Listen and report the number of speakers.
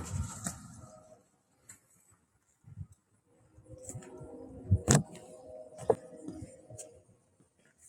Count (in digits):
0